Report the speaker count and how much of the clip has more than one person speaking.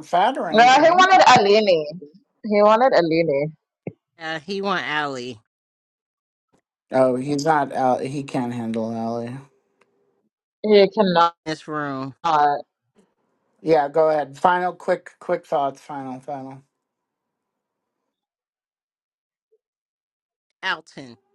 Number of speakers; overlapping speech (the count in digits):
3, about 3%